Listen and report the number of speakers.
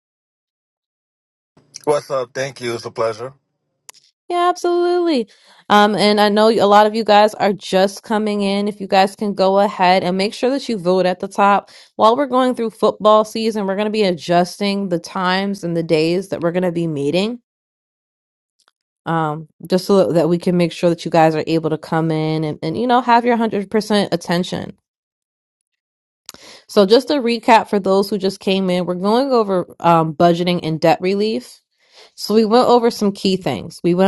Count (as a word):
two